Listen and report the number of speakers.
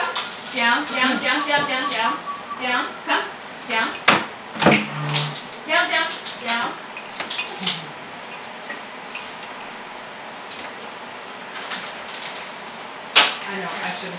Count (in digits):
2